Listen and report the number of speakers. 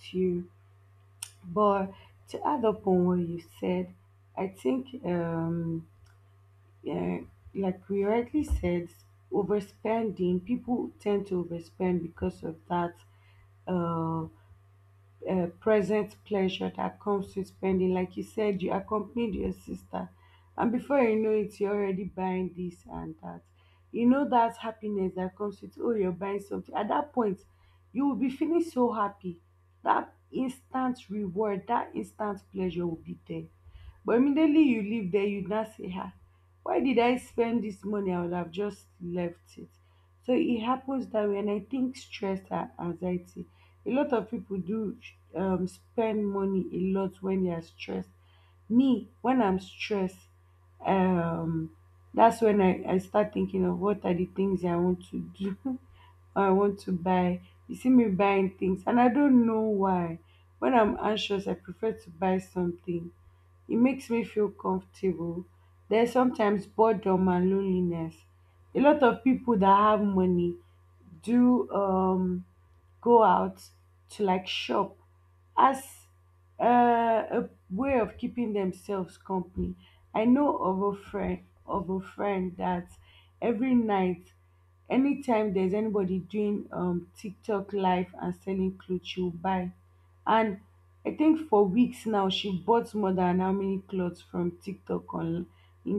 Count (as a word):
one